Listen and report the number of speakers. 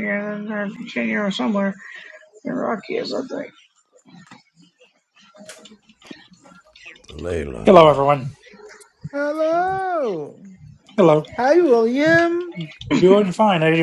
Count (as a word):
four